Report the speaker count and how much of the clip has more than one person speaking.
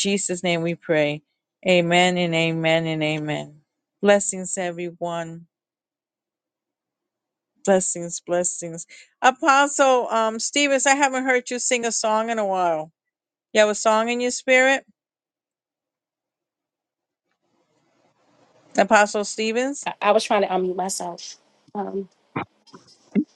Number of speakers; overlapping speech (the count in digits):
2, no overlap